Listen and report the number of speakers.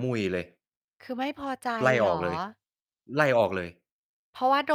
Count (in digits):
2